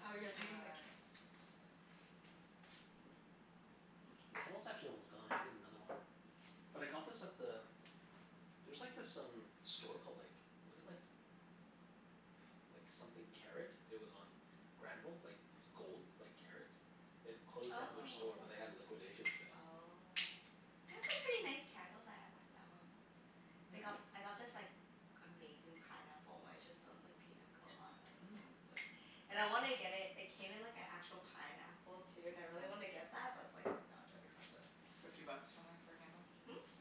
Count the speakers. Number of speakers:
three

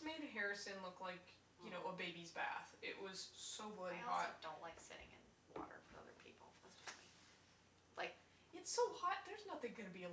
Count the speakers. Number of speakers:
two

